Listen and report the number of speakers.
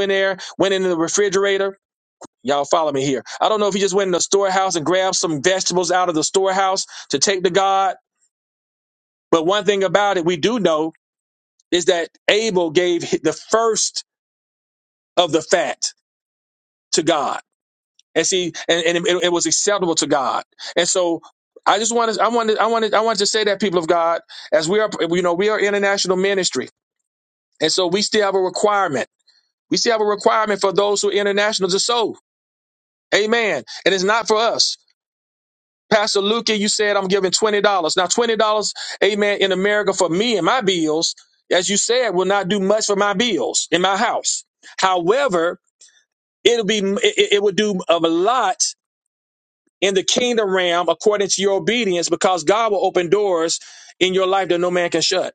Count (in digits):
1